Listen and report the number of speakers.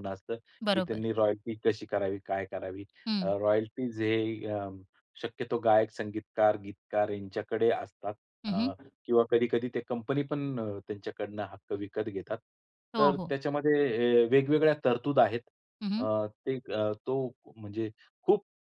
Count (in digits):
2